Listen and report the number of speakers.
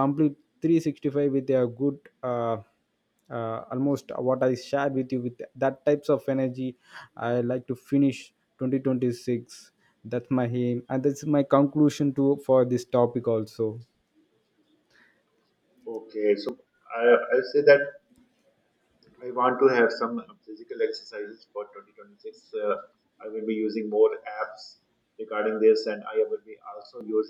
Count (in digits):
2